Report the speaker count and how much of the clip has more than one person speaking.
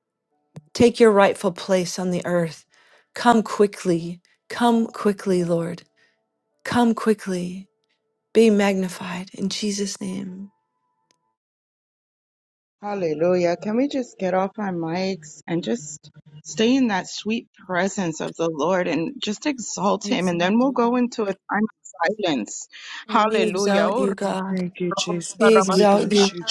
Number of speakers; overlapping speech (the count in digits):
3, about 11%